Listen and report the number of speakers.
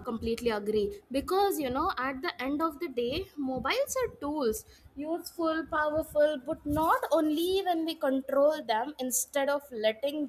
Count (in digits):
1